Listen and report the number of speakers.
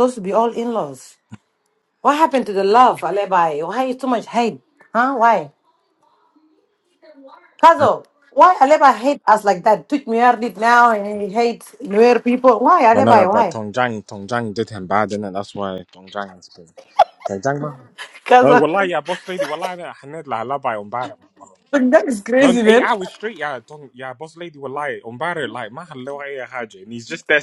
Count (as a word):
two